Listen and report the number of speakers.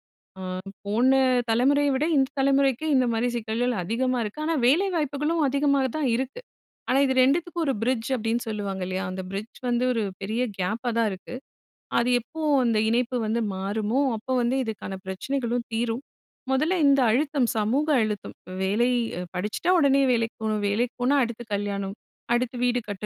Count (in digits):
1